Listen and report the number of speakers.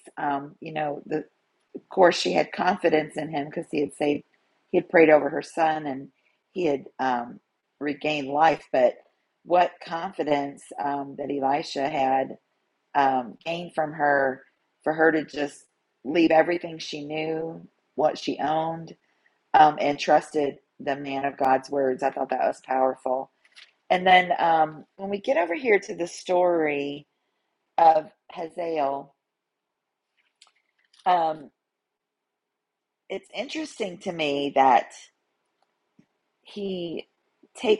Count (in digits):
1